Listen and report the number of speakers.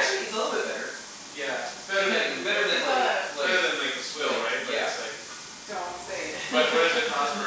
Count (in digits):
3